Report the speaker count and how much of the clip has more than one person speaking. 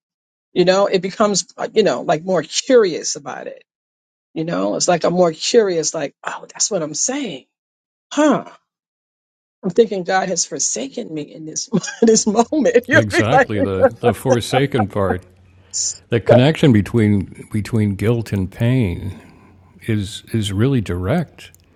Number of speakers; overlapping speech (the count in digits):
2, about 2%